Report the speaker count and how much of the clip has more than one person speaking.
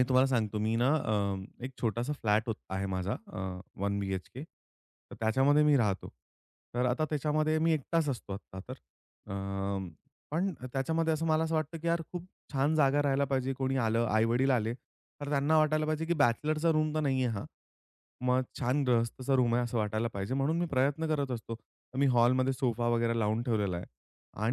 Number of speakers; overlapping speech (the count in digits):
1, no overlap